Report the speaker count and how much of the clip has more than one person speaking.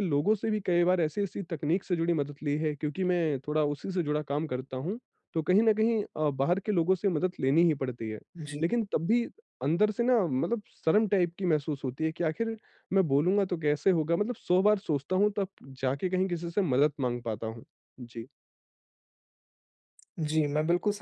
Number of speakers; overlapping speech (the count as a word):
two, under 1%